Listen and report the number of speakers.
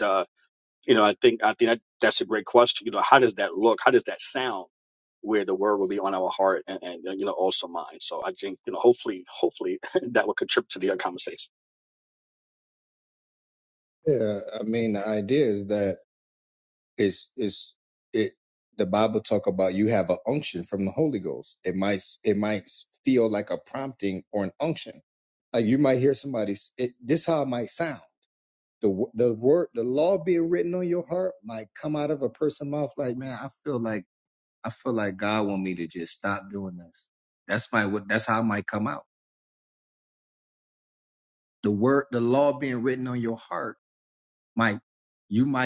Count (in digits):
2